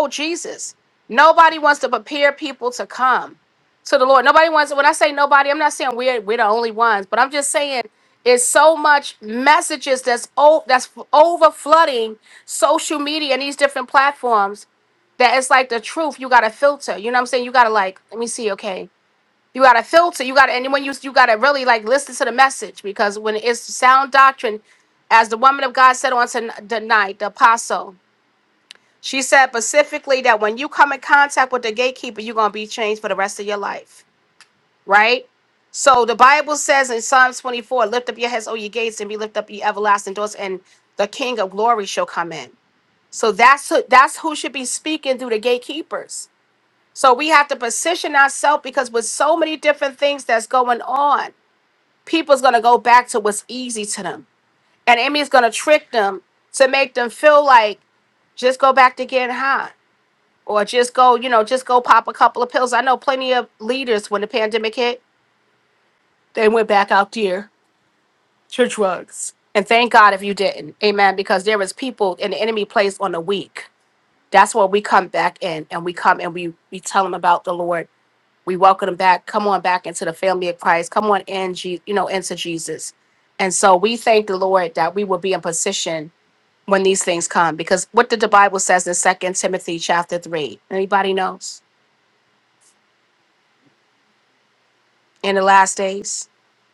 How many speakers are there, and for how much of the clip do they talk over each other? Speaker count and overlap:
1, no overlap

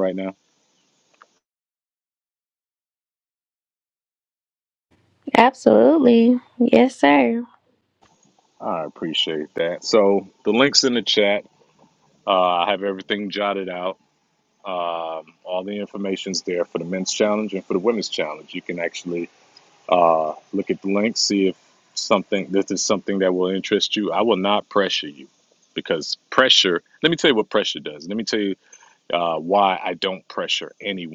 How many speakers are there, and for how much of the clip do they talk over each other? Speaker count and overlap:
2, no overlap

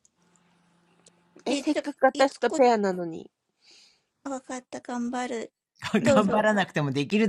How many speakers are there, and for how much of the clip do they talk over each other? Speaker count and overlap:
3, about 16%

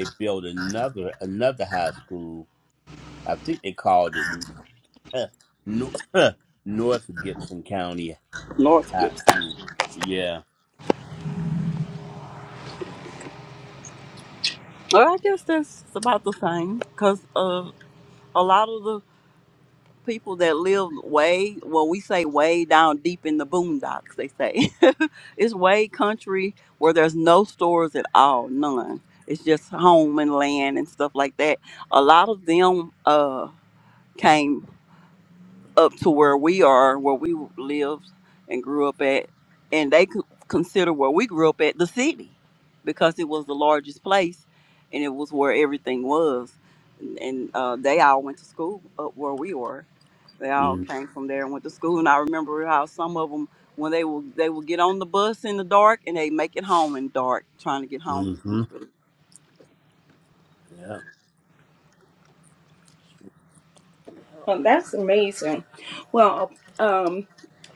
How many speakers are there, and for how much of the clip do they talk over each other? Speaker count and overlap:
3, about 1%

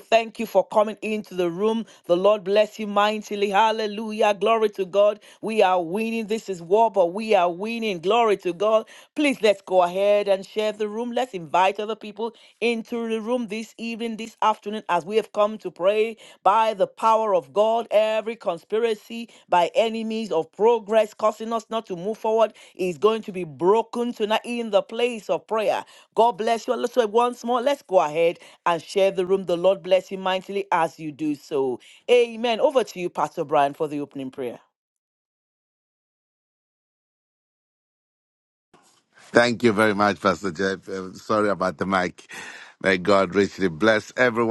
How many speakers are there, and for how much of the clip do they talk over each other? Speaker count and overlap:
2, no overlap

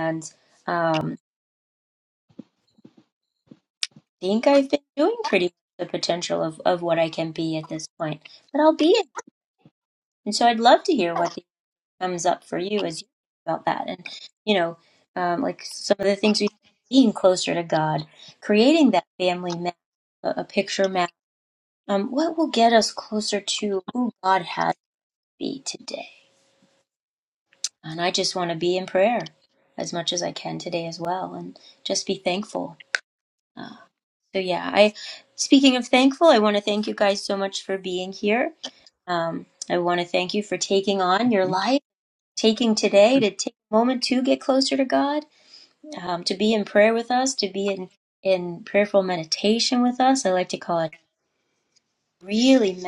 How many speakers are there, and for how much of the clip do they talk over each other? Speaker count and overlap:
1, no overlap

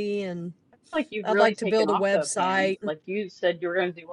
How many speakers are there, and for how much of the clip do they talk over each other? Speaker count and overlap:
2, about 37%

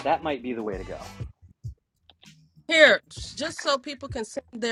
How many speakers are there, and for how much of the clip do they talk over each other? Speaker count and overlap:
2, no overlap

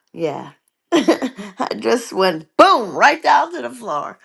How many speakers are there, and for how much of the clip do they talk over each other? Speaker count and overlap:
1, no overlap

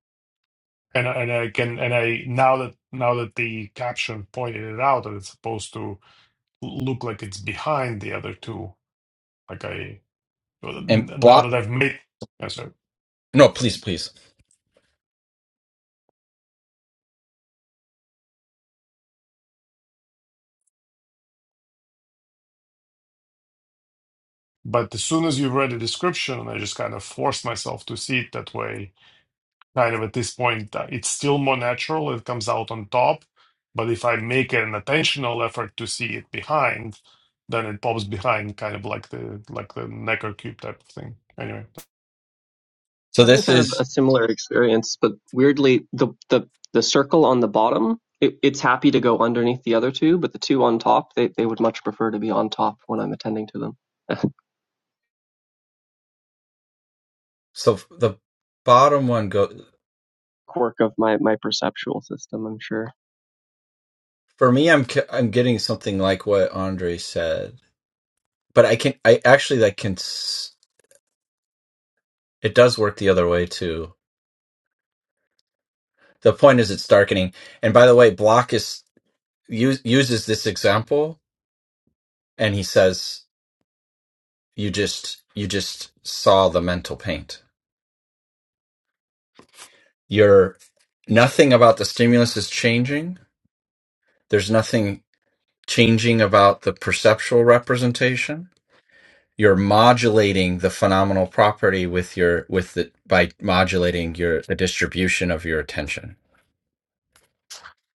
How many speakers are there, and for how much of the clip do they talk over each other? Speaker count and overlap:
3, about 1%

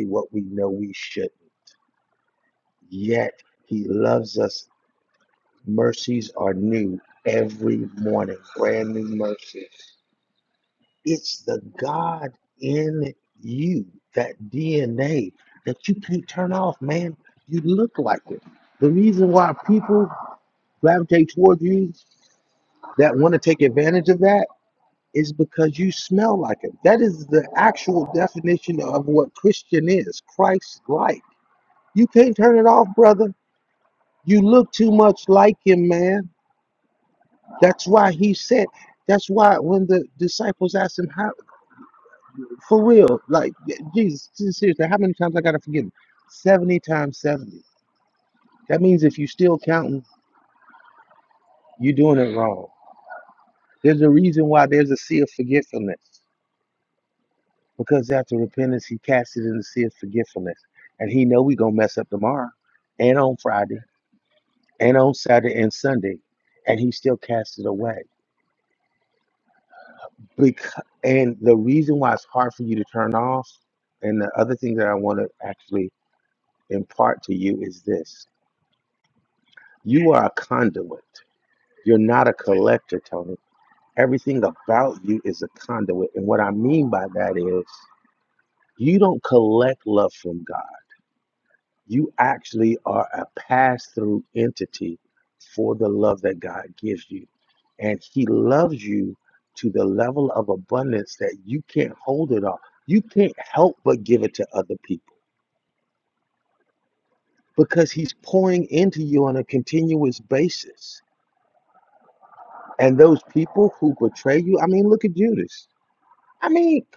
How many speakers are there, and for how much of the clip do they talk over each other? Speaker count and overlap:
1, no overlap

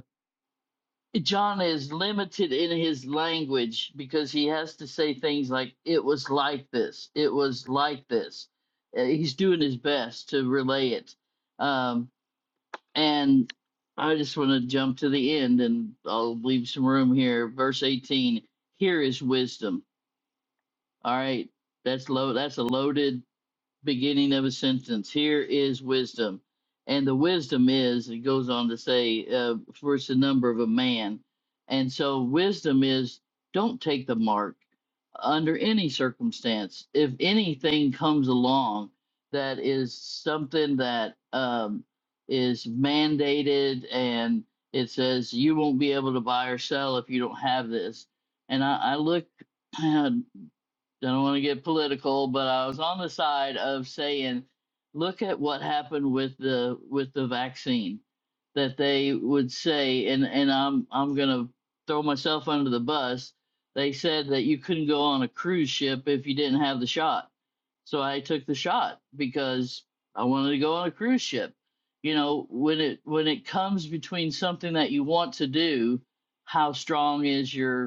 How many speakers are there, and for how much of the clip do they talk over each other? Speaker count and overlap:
1, no overlap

